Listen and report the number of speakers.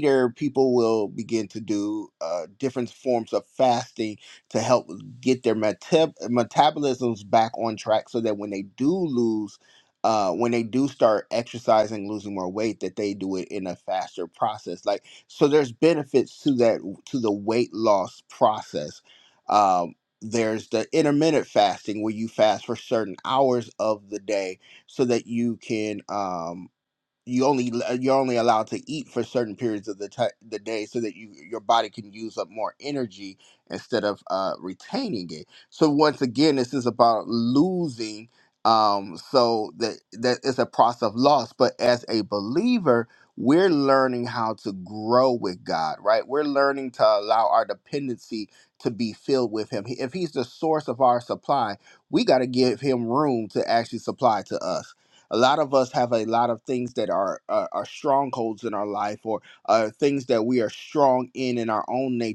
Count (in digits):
1